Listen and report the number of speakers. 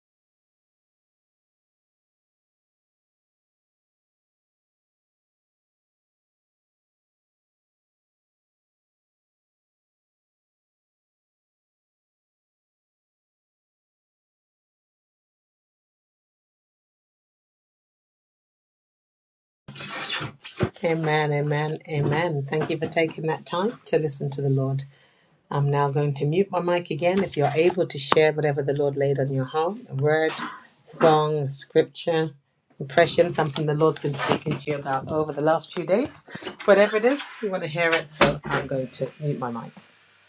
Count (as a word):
one